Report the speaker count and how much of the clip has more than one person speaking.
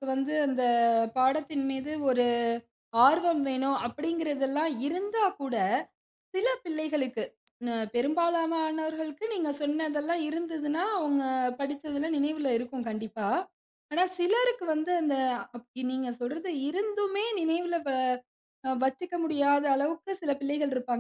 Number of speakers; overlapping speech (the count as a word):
one, no overlap